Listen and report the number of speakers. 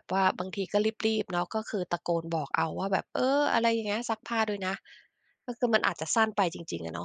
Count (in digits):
1